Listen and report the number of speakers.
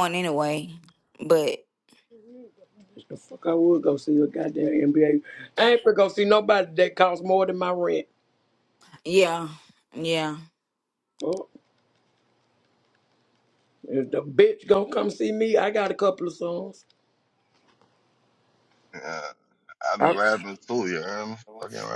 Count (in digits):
3